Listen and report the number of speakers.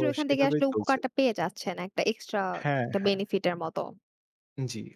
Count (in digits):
2